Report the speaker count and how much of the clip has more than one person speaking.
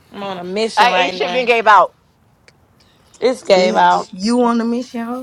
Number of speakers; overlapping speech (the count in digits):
3, about 18%